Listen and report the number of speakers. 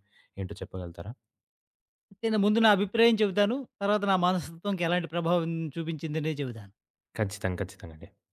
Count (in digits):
2